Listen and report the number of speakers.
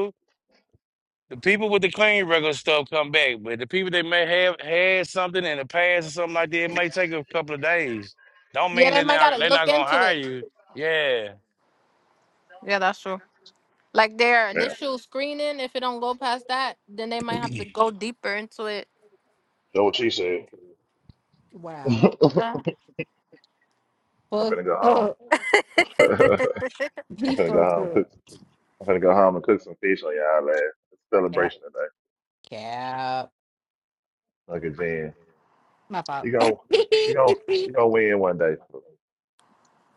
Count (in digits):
4